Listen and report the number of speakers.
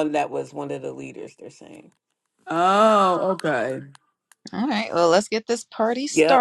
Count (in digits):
3